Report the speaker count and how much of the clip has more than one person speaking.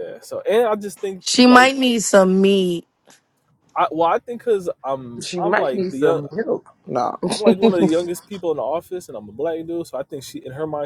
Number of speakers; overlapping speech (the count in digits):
3, about 19%